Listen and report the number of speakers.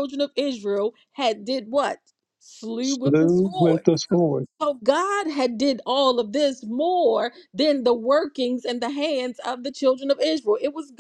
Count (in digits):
2